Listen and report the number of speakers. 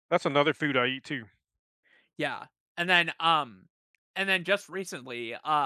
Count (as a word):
two